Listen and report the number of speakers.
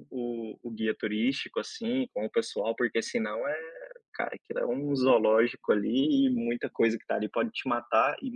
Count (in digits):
1